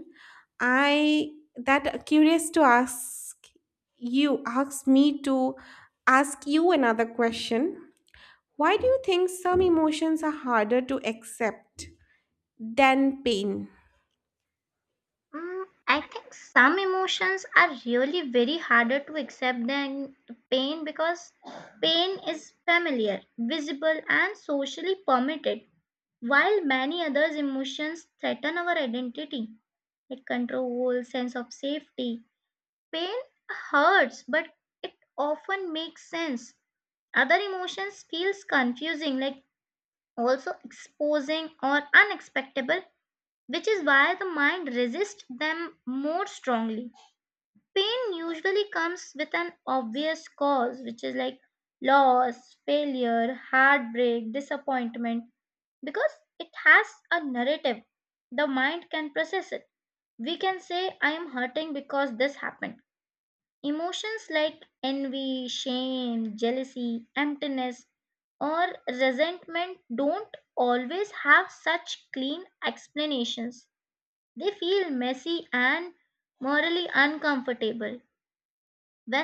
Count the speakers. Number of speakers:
2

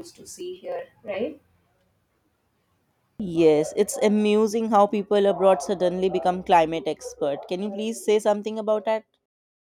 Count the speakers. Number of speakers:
2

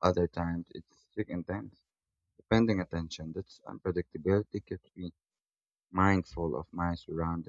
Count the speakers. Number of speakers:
1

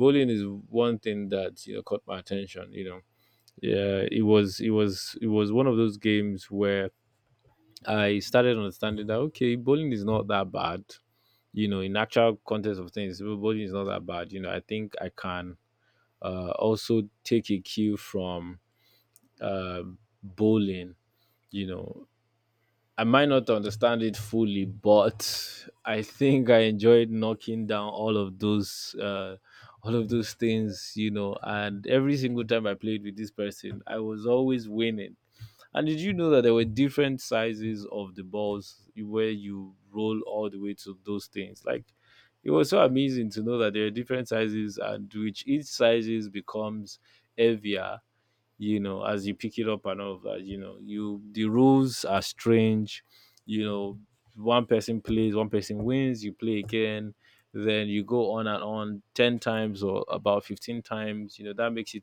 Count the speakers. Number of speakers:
1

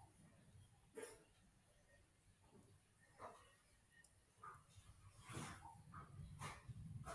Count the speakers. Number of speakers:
0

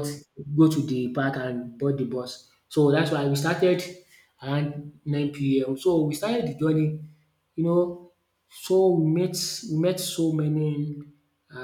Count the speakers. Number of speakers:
1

